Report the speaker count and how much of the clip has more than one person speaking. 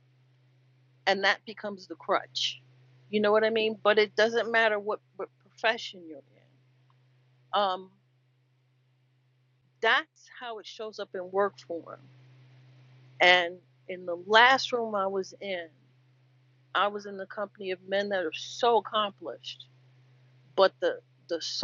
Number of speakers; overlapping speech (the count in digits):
1, no overlap